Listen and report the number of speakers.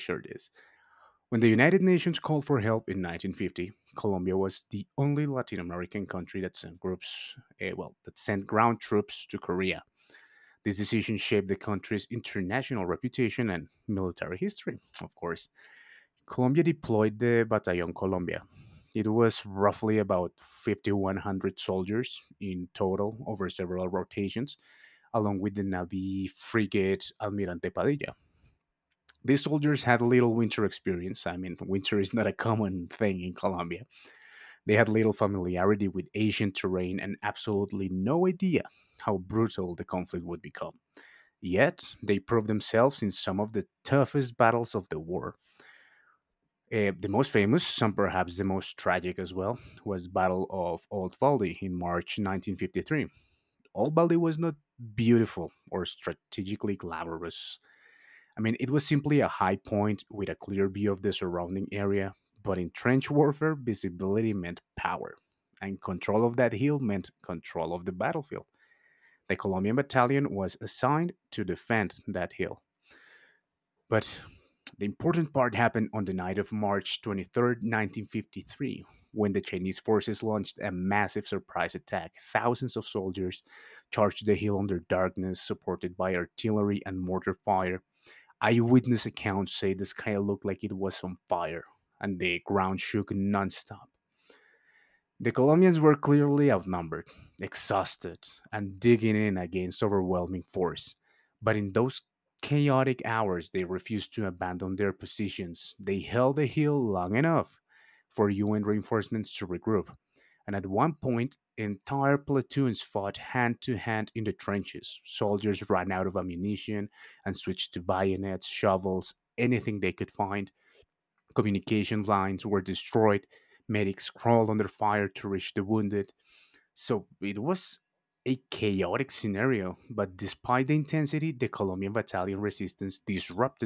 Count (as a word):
one